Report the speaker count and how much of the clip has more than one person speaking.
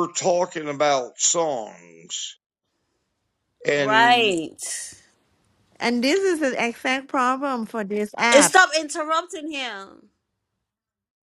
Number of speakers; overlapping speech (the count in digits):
3, about 7%